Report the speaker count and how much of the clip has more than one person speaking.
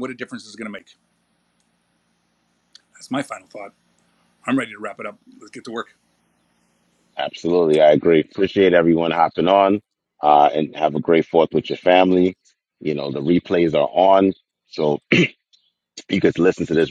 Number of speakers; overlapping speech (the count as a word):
two, no overlap